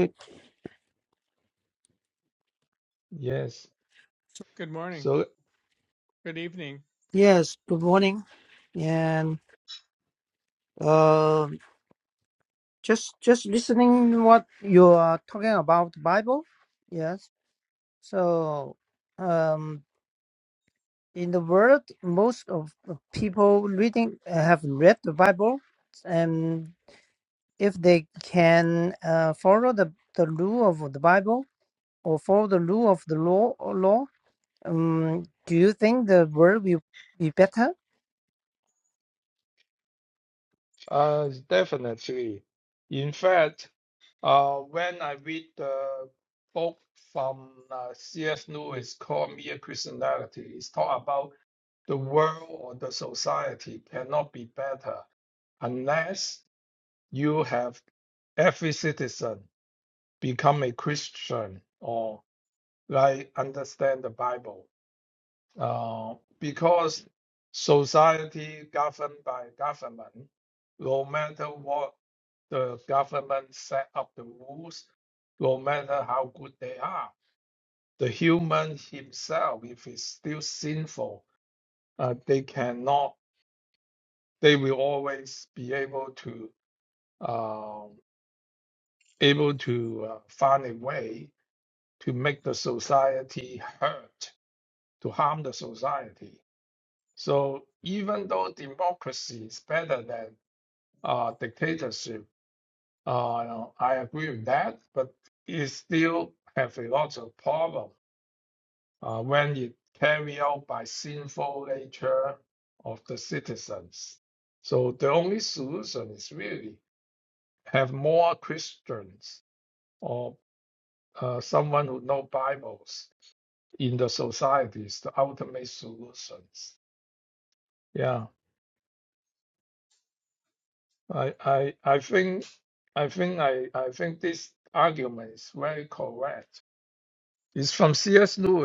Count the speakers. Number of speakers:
three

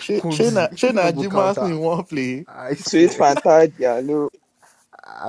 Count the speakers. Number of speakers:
three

